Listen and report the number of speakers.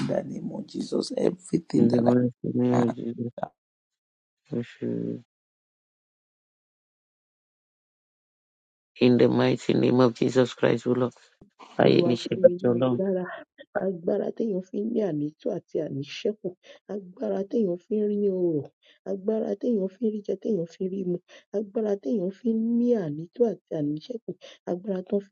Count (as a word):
three